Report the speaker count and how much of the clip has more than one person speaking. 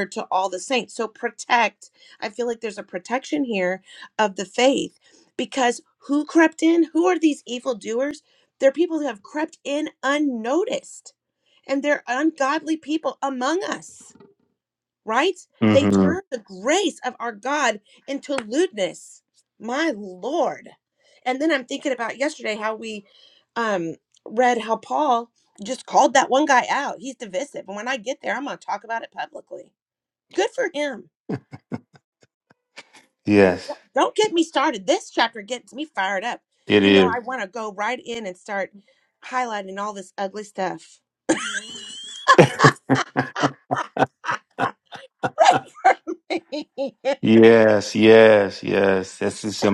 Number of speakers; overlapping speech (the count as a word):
two, about 2%